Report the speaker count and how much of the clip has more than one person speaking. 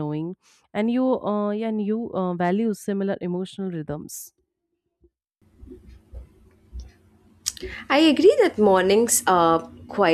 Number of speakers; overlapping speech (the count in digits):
2, no overlap